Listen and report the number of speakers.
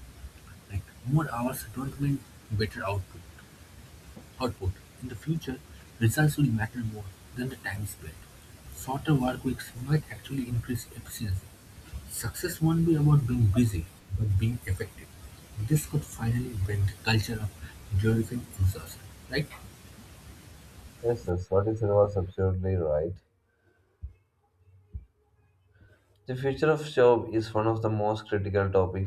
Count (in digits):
2